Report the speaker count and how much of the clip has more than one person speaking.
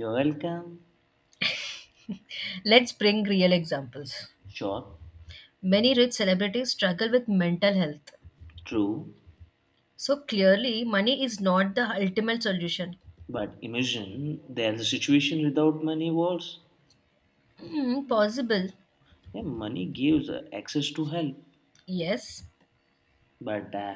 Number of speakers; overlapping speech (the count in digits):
2, no overlap